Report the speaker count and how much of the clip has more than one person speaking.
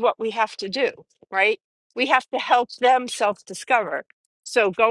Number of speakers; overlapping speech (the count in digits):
1, no overlap